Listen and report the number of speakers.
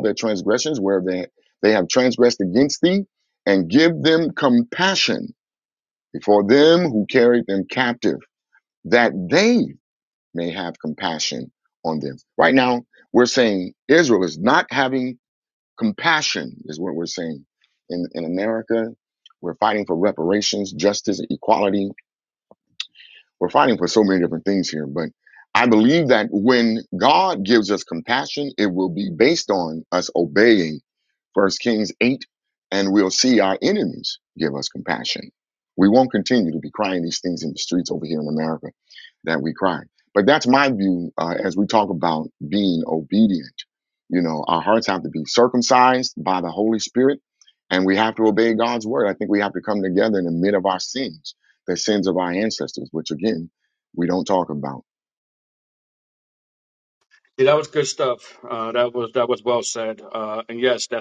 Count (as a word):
two